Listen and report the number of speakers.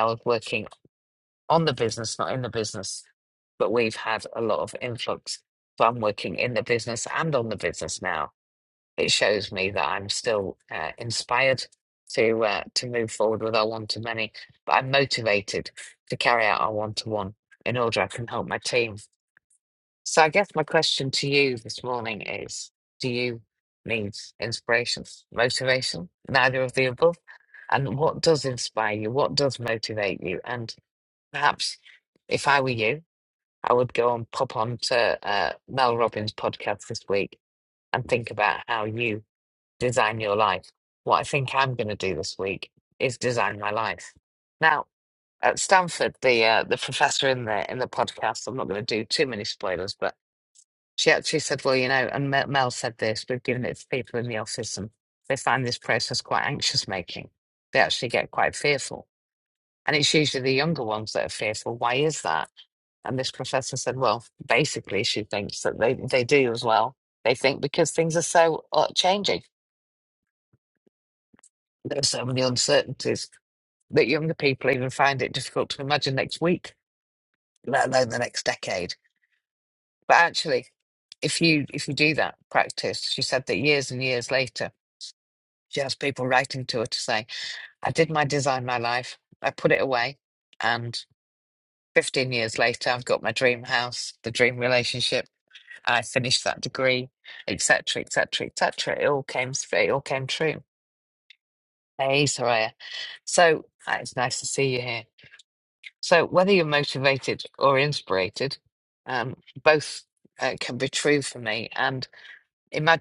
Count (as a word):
one